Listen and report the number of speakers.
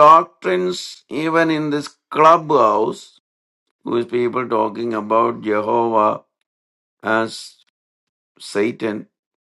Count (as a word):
one